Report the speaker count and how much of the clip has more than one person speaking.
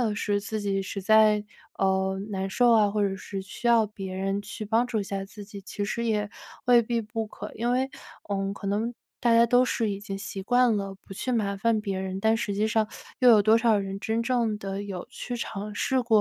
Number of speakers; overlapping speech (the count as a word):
one, no overlap